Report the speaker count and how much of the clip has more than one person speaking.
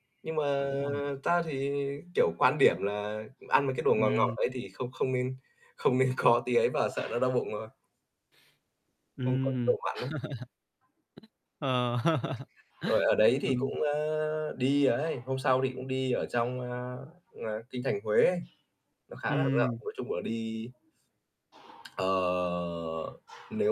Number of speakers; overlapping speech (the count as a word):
two, about 7%